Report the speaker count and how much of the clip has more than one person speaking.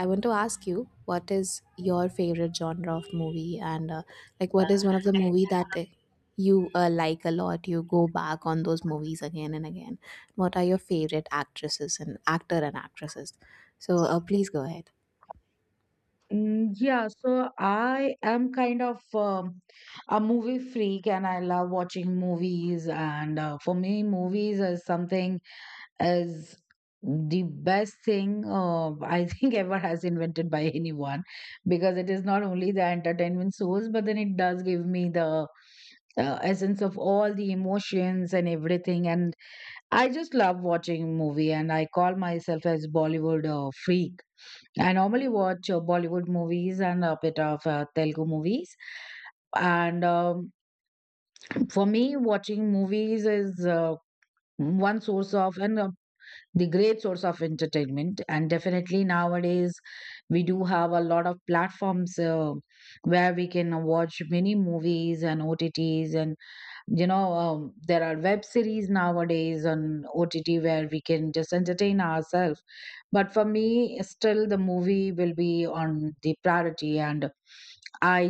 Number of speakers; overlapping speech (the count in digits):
2, no overlap